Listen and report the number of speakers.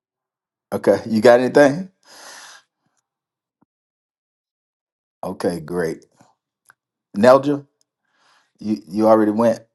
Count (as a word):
one